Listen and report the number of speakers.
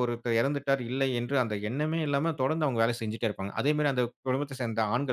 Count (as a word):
one